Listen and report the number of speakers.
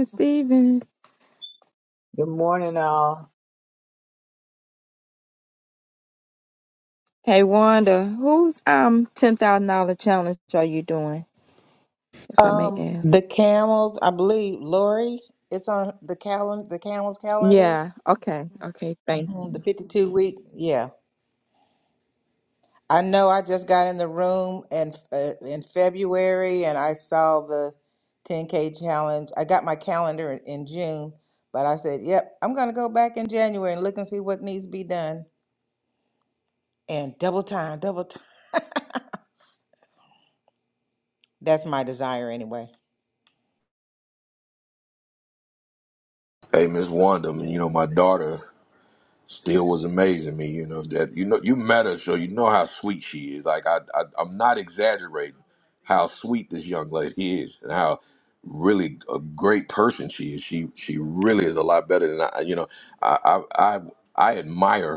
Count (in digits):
4